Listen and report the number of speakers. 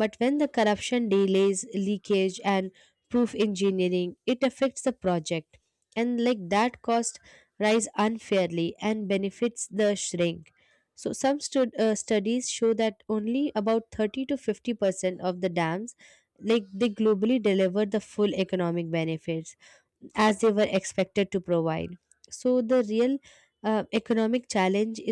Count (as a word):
one